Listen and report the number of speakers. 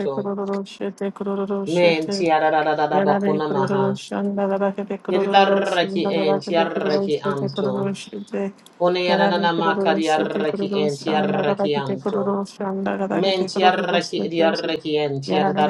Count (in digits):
2